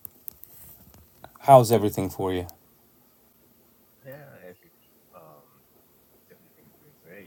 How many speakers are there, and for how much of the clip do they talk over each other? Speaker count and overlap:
two, no overlap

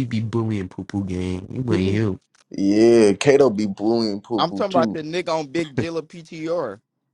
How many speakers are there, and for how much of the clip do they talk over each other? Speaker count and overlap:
three, about 12%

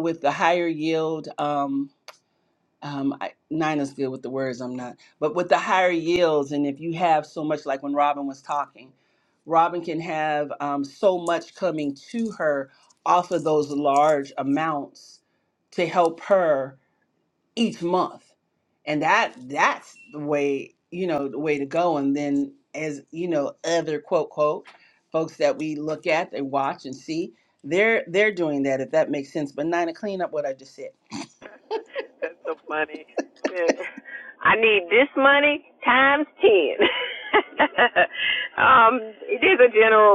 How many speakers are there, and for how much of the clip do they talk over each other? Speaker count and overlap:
two, no overlap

